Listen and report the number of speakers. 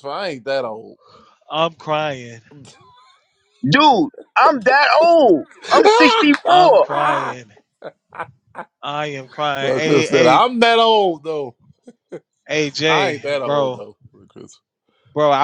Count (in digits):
3